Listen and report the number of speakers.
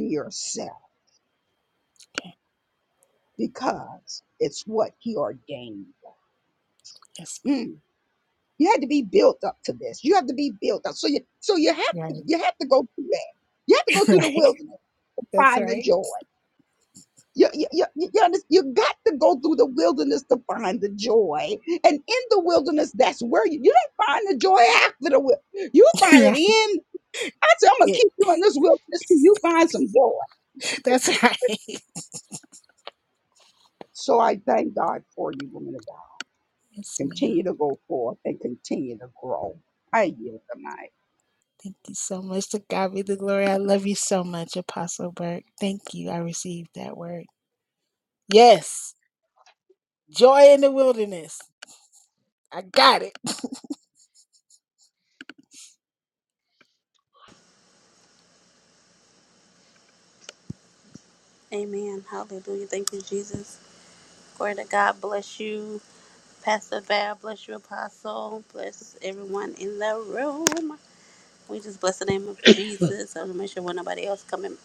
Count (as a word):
three